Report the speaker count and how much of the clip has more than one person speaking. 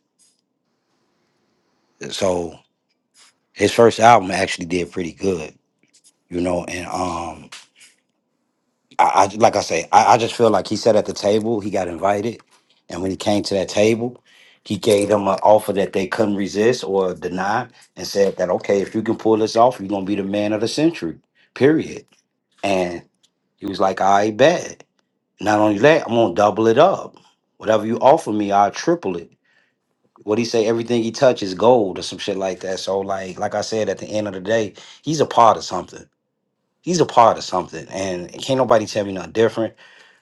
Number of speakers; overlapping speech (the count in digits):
1, no overlap